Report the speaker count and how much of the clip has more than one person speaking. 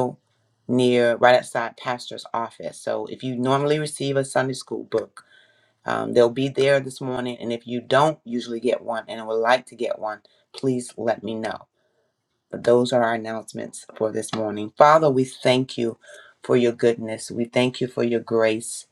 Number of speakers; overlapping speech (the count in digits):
1, no overlap